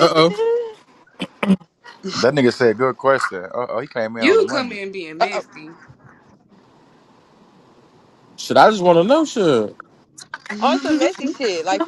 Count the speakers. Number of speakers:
4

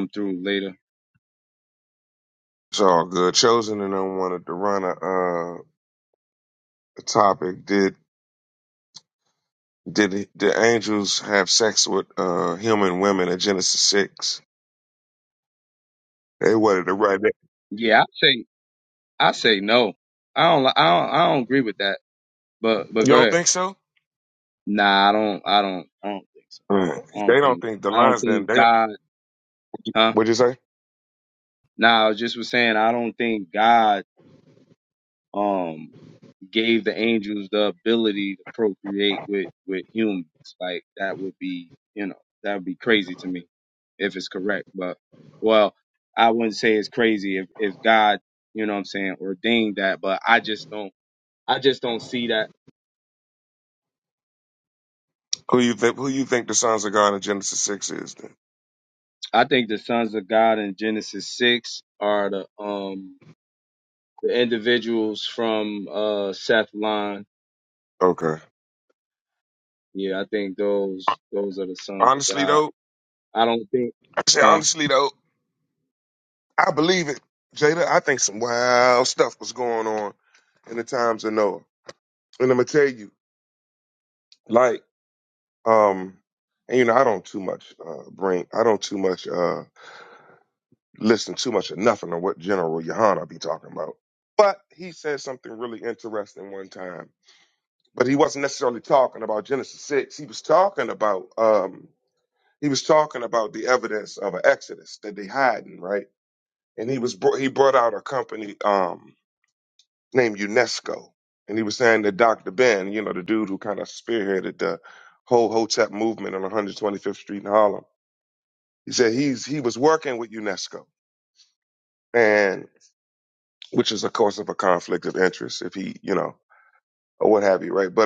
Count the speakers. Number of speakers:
2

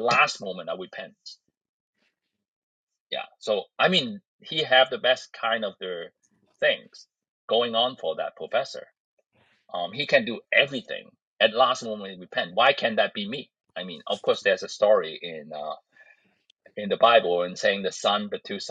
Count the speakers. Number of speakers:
1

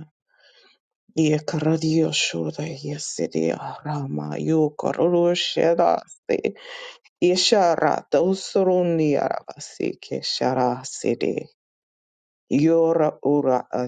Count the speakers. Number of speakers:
1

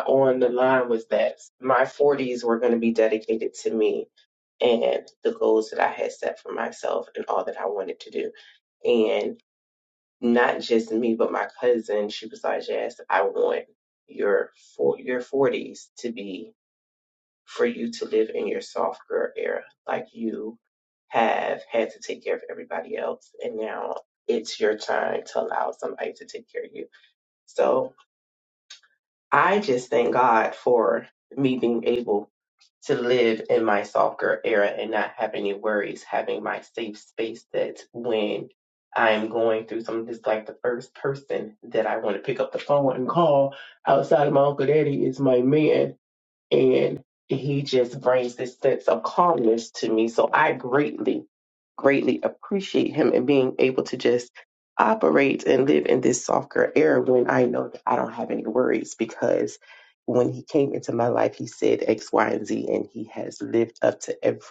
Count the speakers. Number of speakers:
1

